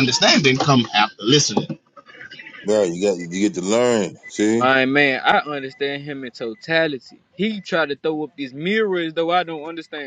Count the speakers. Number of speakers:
3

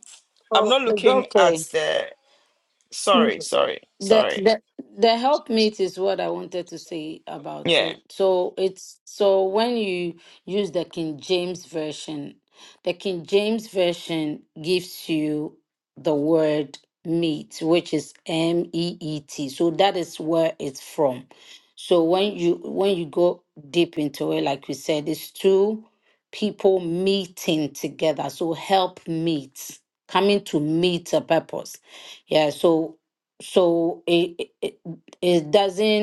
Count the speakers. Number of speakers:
2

